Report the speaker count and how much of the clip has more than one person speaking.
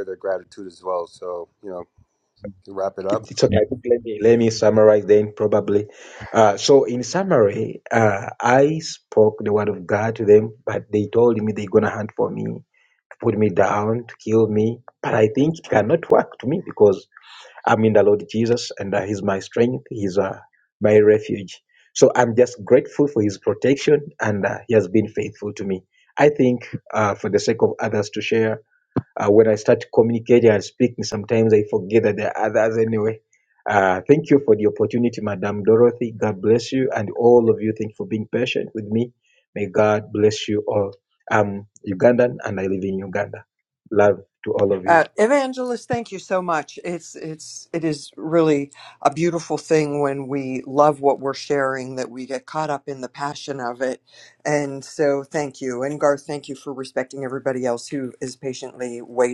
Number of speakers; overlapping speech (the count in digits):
3, about 1%